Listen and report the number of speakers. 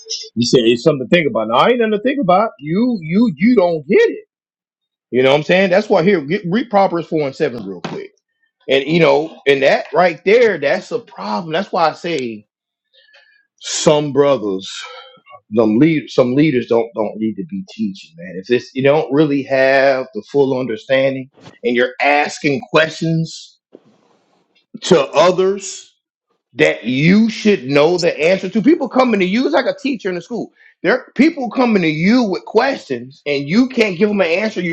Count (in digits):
1